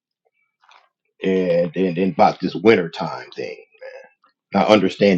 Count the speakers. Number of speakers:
1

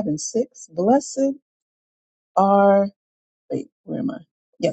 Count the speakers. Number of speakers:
1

